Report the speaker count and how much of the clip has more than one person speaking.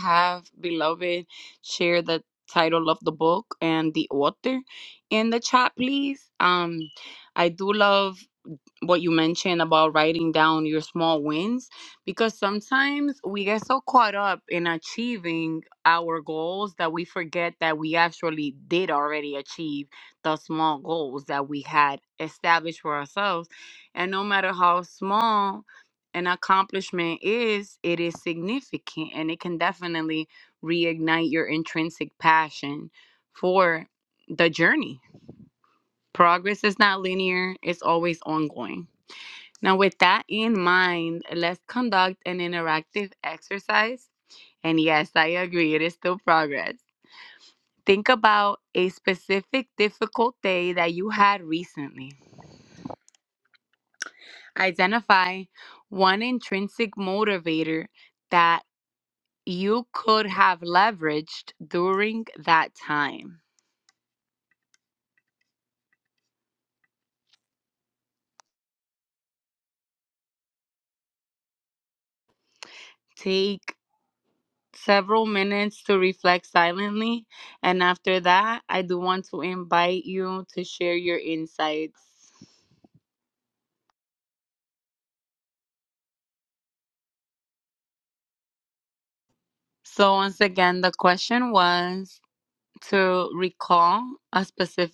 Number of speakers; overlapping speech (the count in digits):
1, no overlap